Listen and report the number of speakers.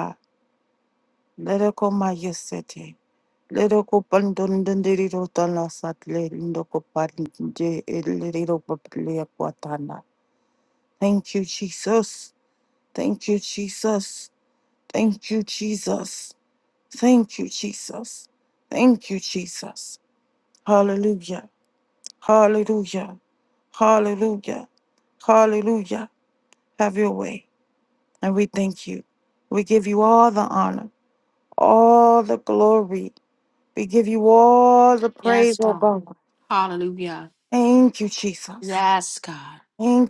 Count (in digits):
2